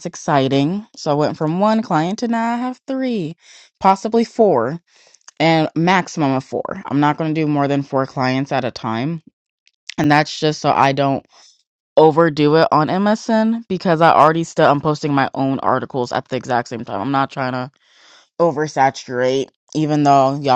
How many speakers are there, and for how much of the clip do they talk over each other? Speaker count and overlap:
one, no overlap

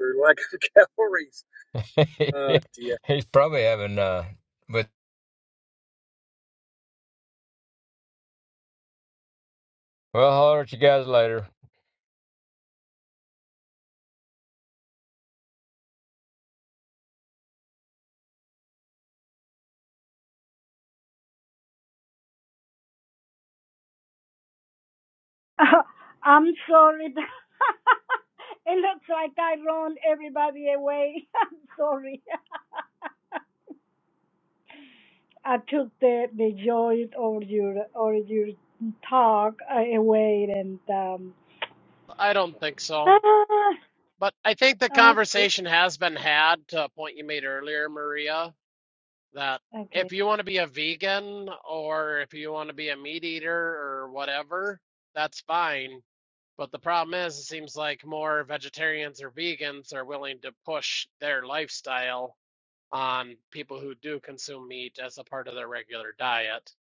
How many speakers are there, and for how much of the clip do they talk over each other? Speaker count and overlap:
four, about 1%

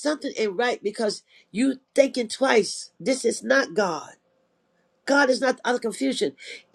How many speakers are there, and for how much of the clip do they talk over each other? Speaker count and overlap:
one, no overlap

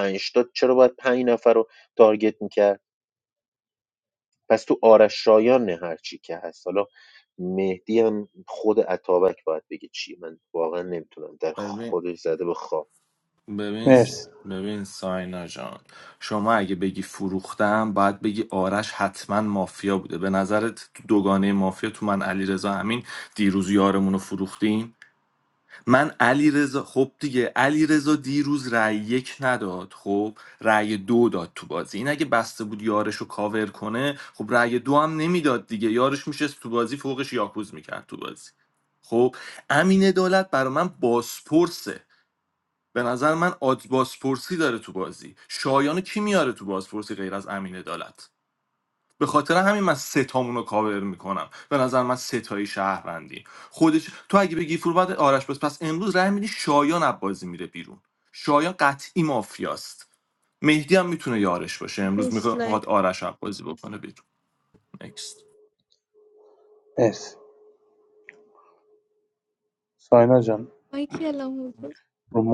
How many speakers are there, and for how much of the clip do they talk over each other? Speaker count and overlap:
four, about 2%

